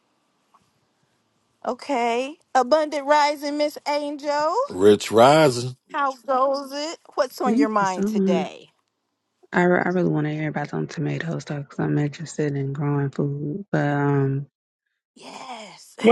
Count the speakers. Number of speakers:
three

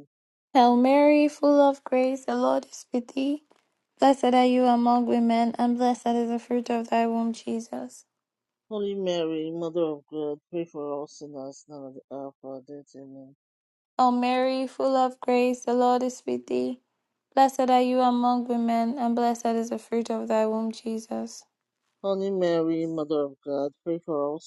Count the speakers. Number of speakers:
two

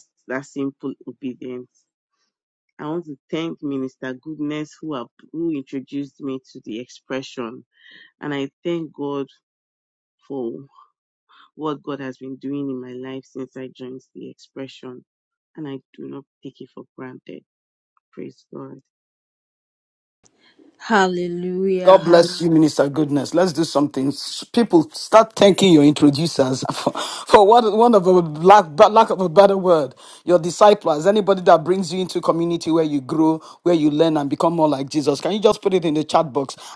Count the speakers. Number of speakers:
three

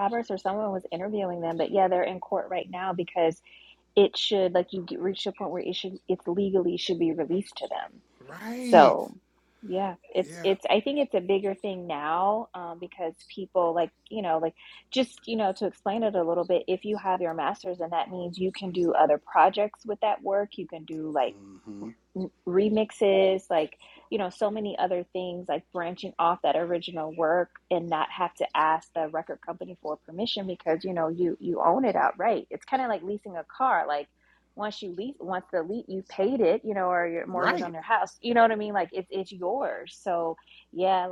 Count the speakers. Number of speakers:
two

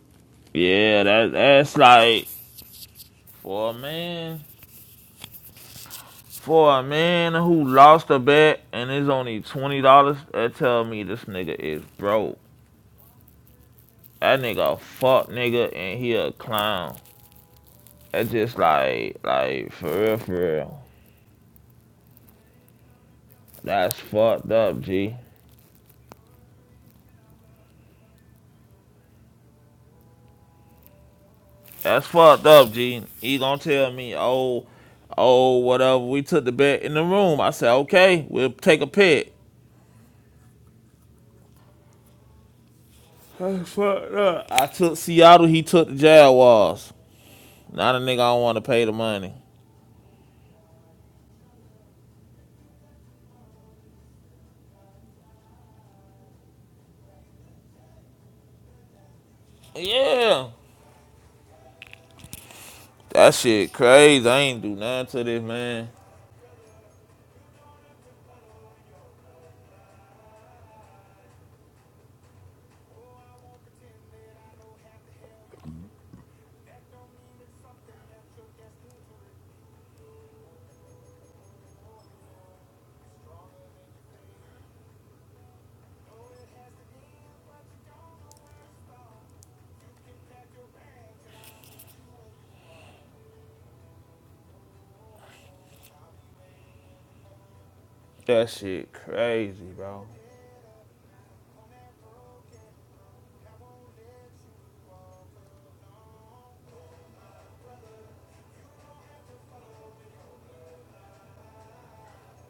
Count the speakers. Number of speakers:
one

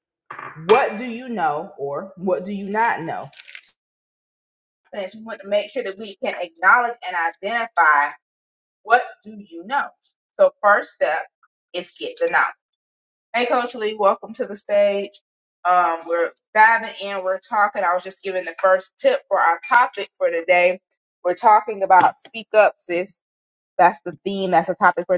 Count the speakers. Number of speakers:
one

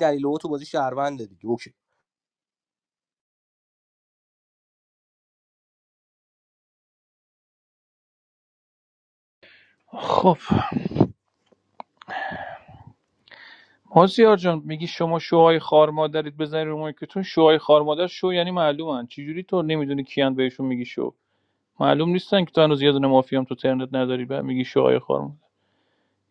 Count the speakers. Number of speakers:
two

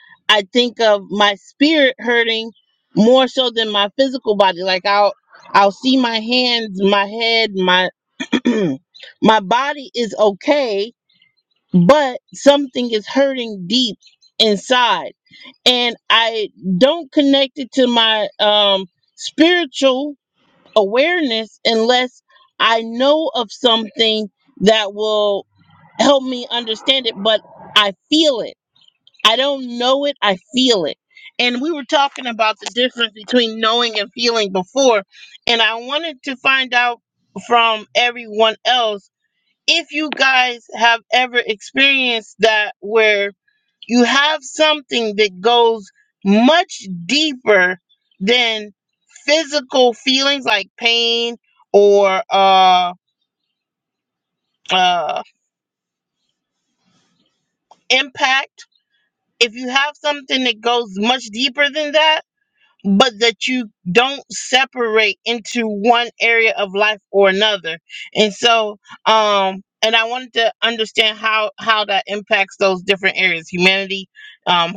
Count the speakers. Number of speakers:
one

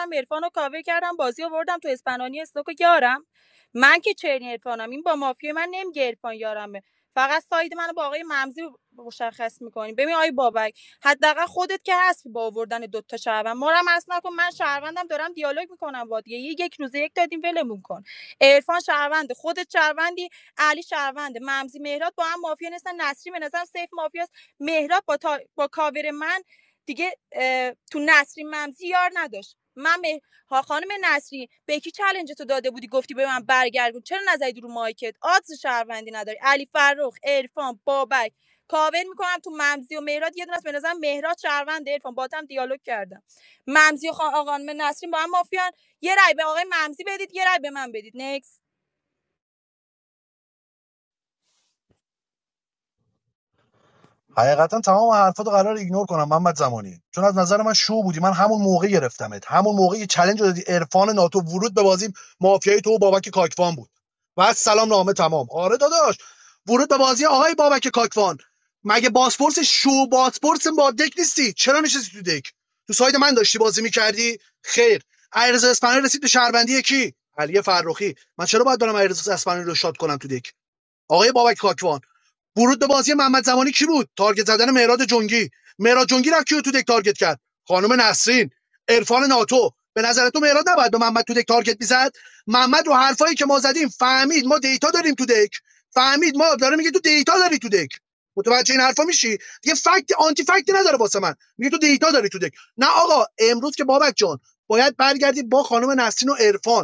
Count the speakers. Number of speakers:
two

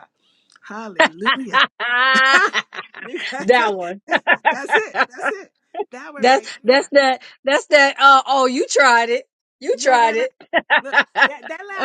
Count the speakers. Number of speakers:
two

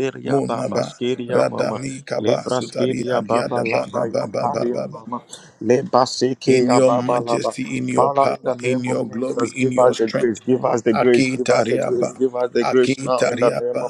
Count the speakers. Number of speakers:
two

